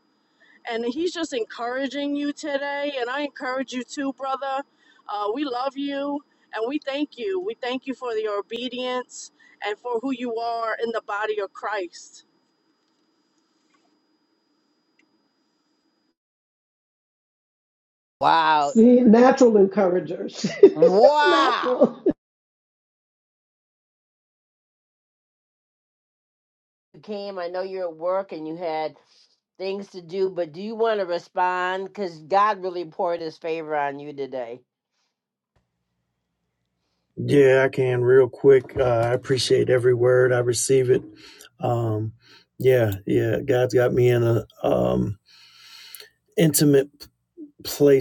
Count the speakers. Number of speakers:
four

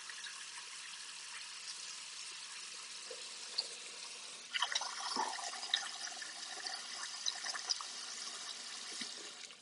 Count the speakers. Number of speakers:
zero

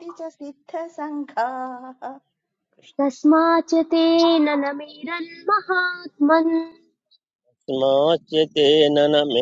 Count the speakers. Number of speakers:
three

